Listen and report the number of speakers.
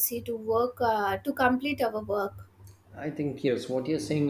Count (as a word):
two